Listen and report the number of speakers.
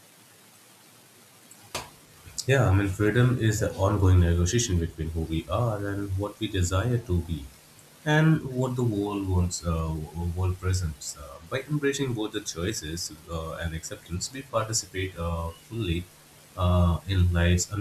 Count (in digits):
1